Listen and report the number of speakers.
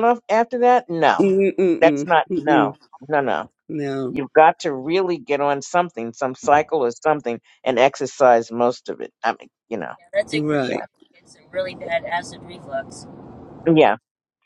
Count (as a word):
three